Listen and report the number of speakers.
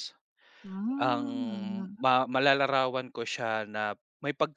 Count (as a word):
two